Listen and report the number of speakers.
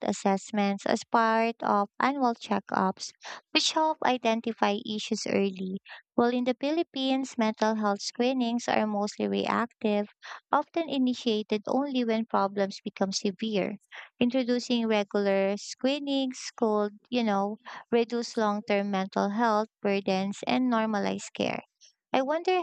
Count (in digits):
1